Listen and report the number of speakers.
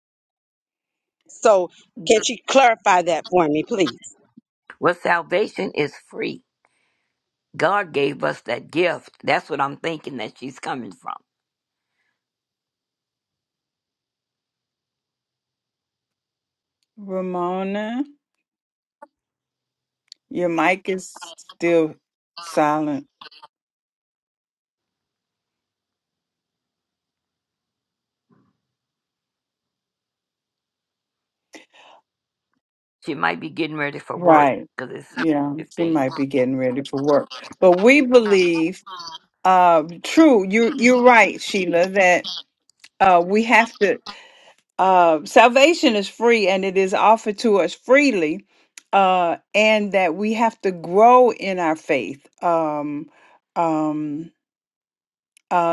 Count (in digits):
3